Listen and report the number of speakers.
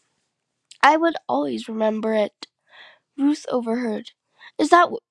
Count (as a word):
one